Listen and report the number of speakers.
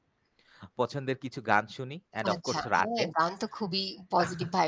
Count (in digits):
2